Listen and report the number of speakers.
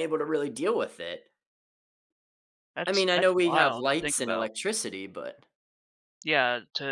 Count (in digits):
2